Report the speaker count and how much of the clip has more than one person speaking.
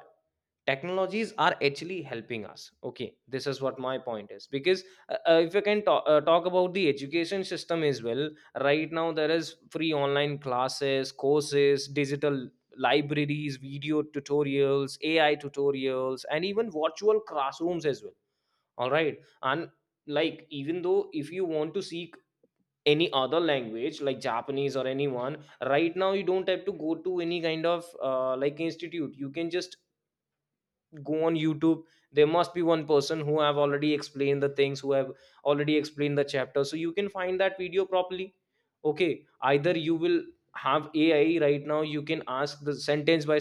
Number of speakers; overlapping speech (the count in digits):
1, no overlap